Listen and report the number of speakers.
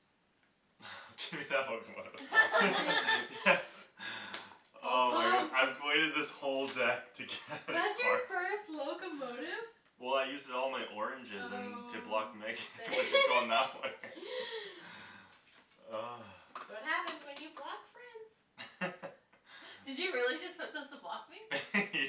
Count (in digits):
3